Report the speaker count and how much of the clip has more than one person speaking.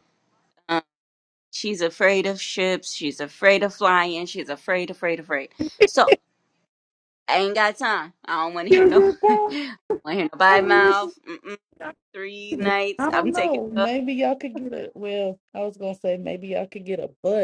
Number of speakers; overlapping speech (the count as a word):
two, about 15%